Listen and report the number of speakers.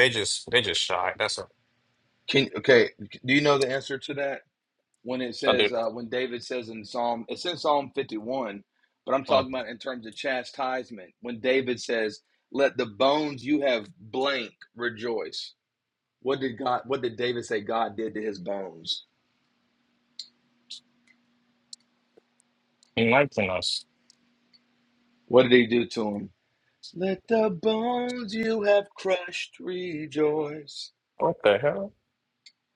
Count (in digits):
2